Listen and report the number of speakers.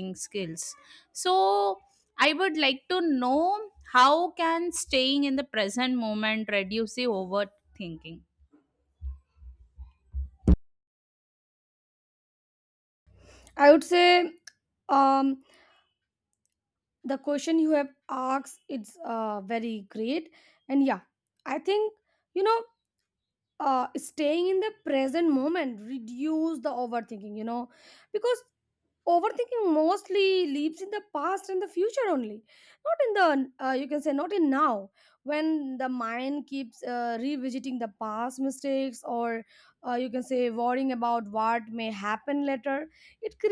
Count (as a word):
two